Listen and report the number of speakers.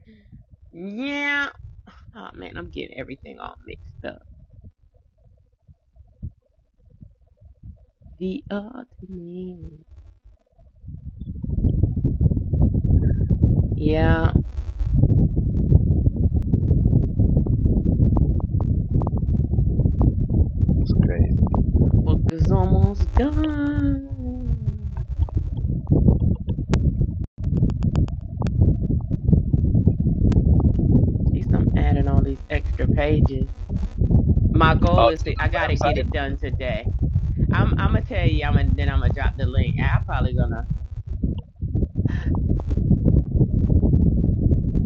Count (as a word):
two